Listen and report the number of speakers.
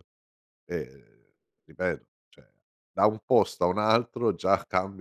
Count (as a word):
one